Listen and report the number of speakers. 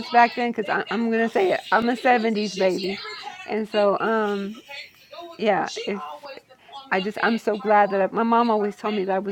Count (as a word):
one